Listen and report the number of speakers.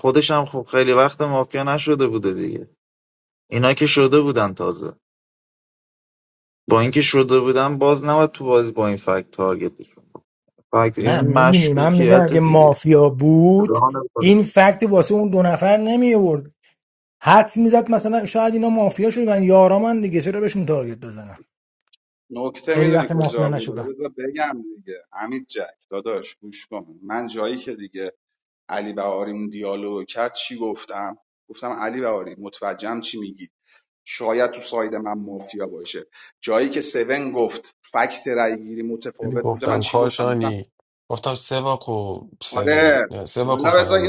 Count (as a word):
four